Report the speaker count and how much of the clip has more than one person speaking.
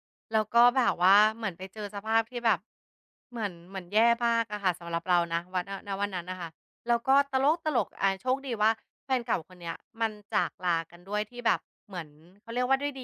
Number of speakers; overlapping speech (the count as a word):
one, no overlap